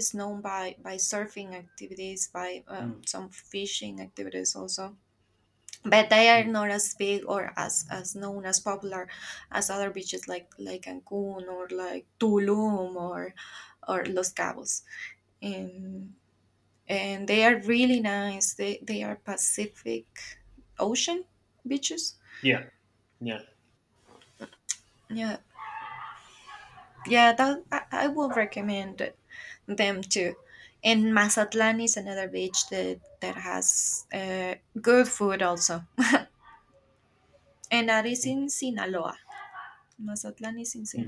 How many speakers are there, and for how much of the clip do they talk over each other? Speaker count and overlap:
2, about 1%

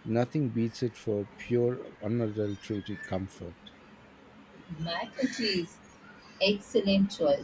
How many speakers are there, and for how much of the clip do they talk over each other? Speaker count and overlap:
2, no overlap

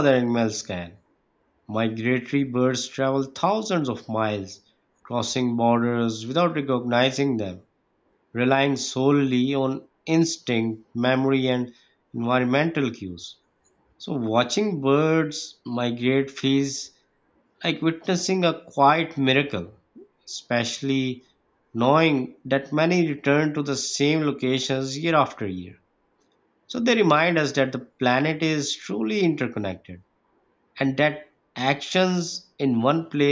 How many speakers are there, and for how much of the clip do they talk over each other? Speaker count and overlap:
1, no overlap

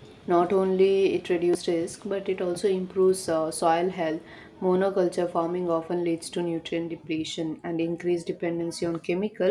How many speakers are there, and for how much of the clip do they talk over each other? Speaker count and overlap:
1, no overlap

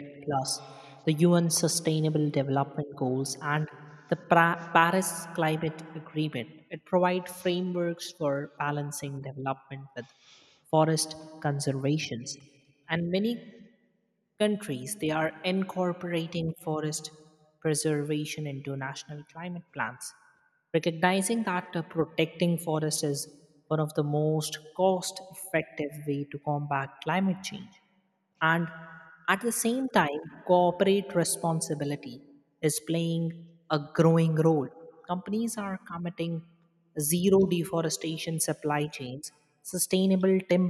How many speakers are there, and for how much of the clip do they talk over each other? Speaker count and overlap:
1, no overlap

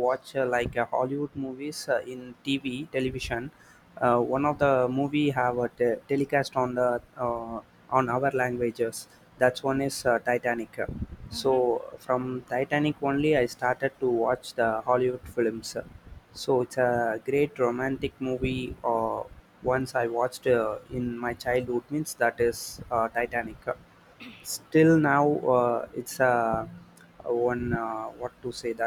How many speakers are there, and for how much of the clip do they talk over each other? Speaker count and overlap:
1, no overlap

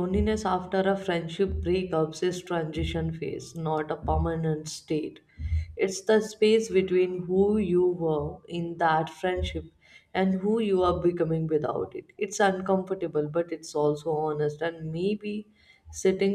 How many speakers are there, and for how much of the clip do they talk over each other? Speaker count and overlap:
1, no overlap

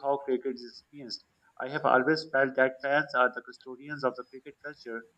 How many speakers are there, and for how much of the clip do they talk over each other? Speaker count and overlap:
1, no overlap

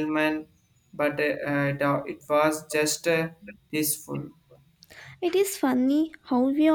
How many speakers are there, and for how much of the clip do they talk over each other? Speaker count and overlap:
2, no overlap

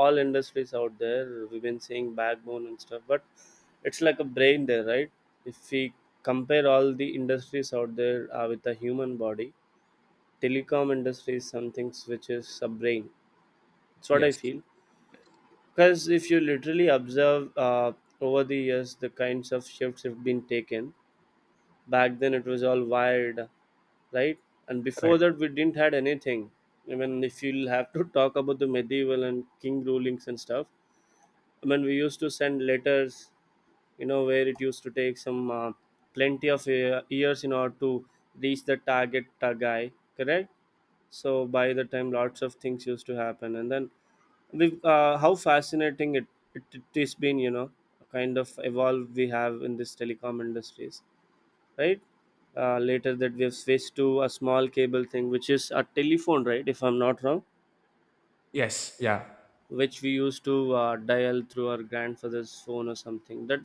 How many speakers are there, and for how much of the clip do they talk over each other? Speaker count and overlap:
2, about 1%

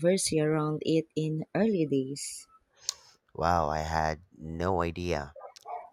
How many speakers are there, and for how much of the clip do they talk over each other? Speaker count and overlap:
2, no overlap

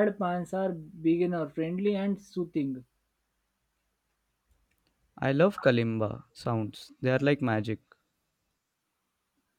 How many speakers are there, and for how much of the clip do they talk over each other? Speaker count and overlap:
2, no overlap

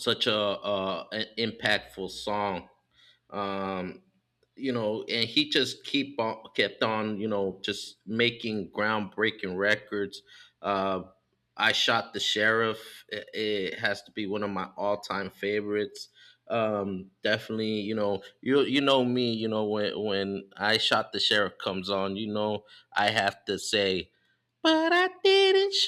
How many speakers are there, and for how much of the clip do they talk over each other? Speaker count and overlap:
1, no overlap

